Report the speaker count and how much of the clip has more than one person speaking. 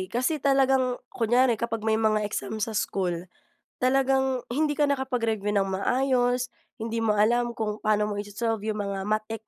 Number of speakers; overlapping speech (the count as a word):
one, no overlap